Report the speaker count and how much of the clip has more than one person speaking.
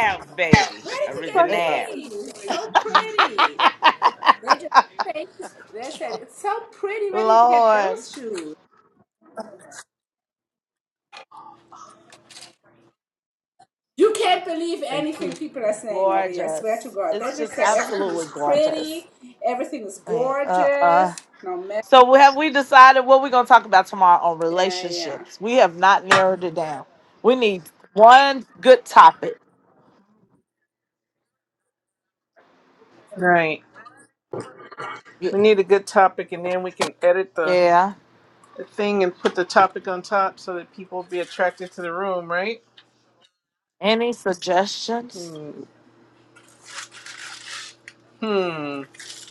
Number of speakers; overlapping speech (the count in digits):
4, about 15%